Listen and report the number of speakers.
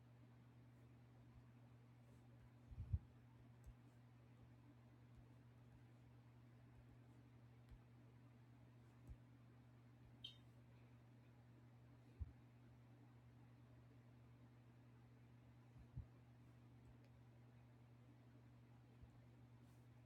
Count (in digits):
0